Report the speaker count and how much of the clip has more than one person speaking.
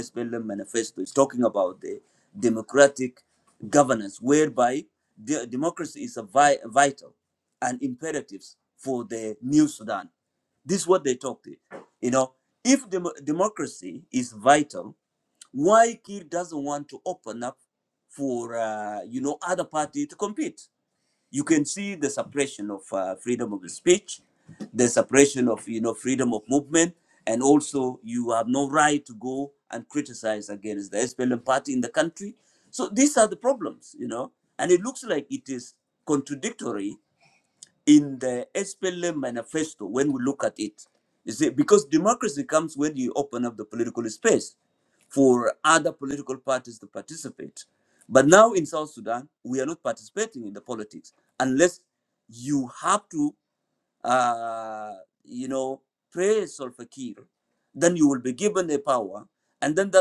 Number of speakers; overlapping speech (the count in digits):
1, no overlap